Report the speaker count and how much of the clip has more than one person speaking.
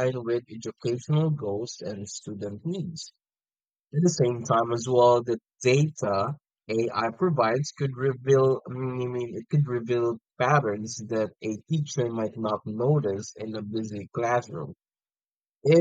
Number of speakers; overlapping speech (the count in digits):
1, no overlap